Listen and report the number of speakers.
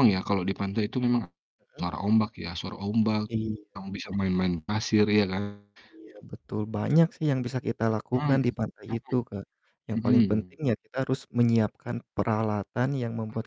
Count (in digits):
2